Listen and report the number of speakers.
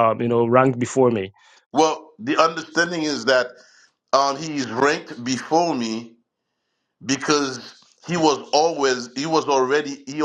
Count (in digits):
2